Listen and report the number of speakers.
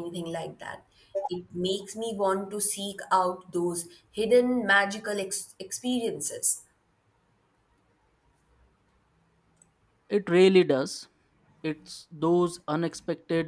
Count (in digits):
2